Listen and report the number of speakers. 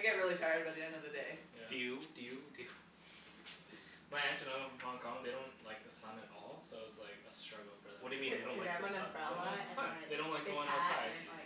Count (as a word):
four